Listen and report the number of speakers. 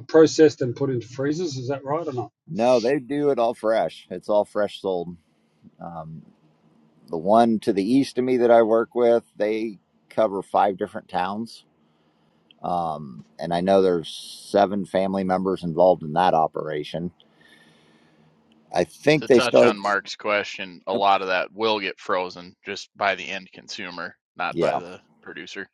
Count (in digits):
3